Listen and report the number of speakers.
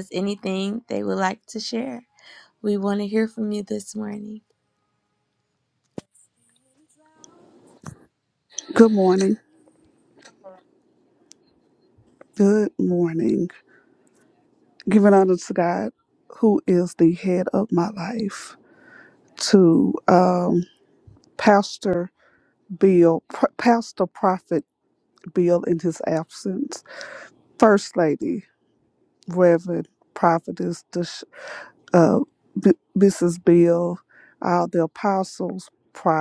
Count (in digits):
2